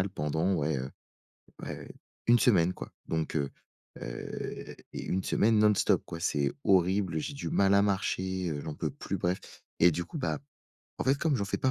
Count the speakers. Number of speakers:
1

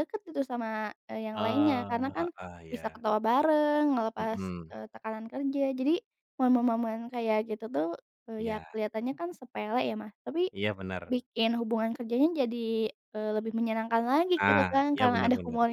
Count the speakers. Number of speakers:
2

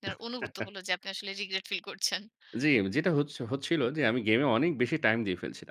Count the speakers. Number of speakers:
2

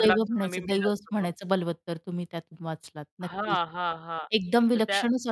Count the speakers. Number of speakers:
2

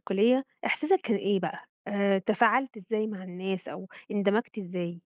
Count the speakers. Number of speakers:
1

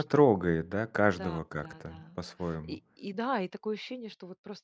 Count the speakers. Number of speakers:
2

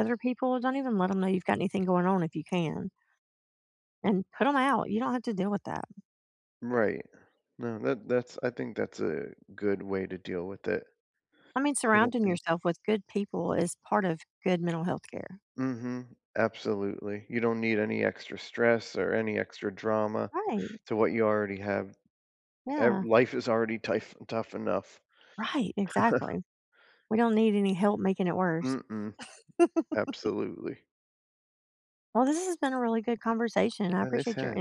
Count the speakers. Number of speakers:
2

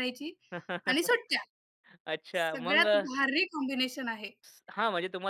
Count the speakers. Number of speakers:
2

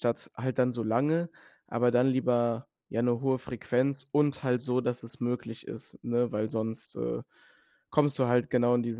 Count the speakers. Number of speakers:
1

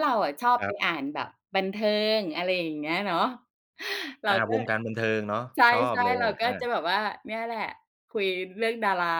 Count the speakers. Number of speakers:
2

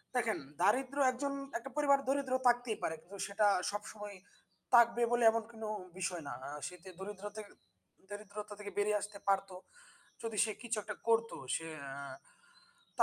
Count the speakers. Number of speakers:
1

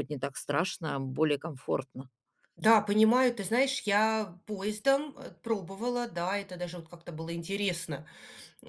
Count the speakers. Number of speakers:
2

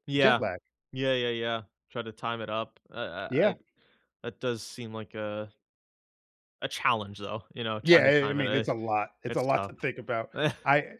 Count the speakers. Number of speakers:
2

